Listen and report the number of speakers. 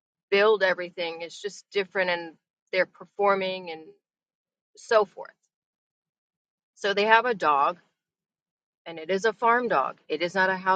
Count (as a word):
one